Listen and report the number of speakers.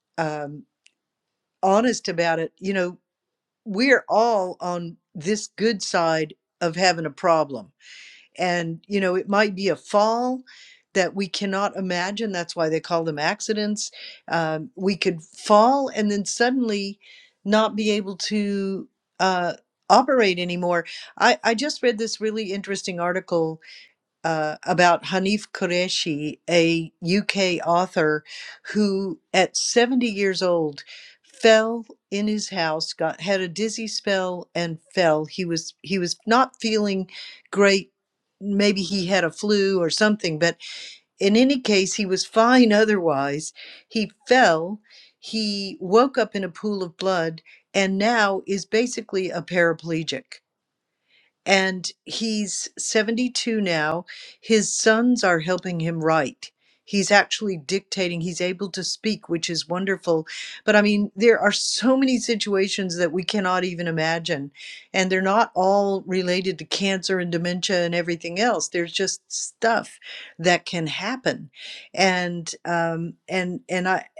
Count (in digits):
1